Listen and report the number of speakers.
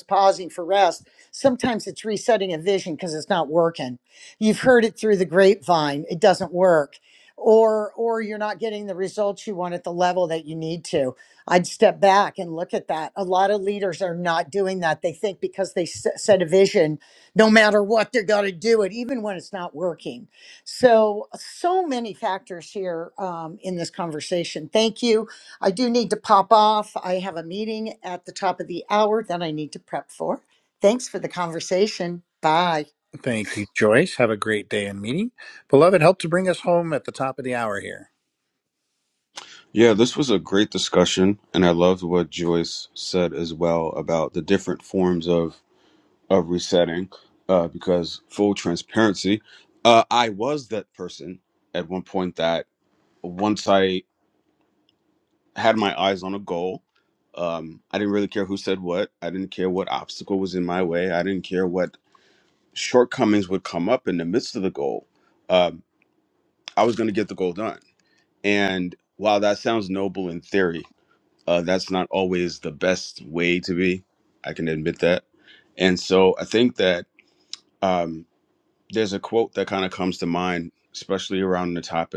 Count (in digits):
3